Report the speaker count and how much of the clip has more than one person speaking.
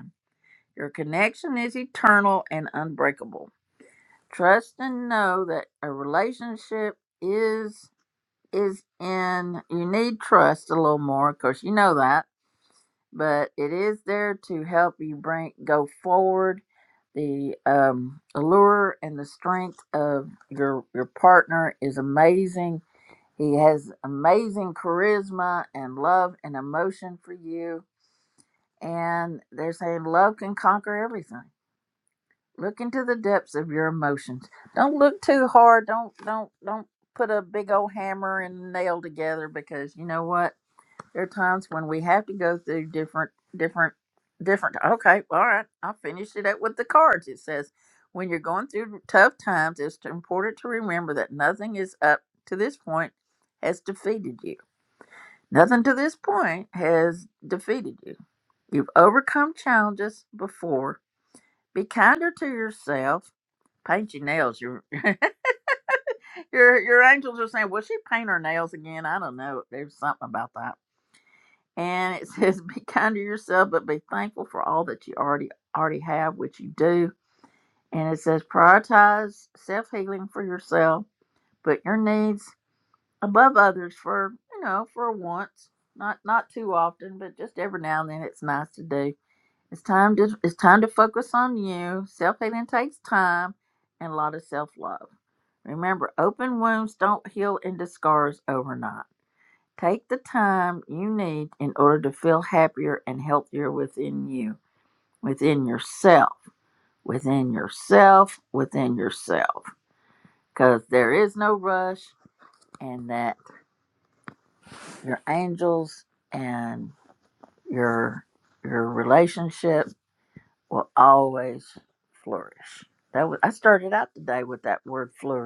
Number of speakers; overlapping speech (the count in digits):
1, no overlap